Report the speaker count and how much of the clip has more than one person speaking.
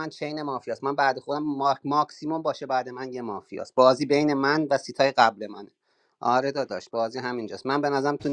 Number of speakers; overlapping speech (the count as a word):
one, no overlap